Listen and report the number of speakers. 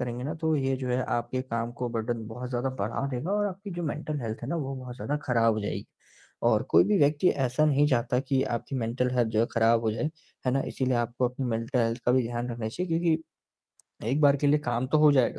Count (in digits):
1